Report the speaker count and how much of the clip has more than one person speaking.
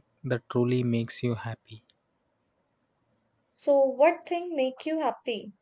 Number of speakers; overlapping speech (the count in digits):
2, no overlap